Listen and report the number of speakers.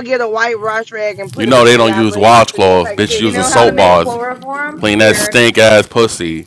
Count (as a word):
three